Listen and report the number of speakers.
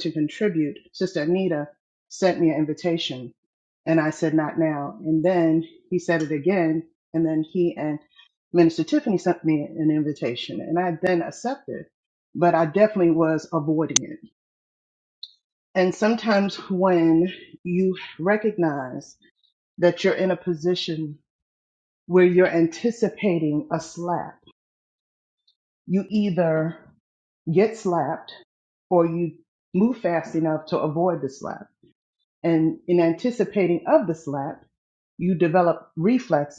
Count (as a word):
one